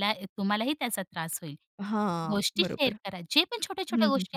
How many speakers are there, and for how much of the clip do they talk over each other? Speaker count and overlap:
2, about 26%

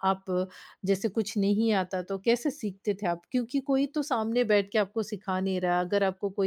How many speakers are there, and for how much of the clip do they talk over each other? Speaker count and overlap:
1, no overlap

